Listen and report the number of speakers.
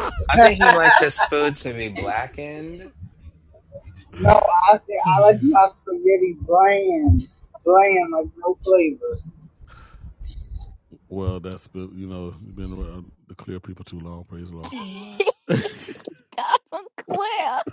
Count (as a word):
four